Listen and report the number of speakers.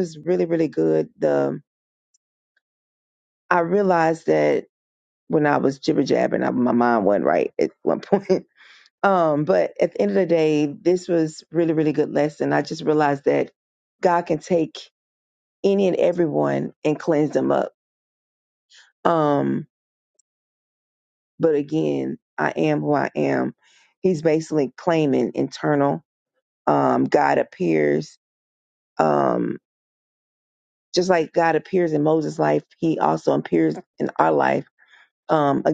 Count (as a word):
one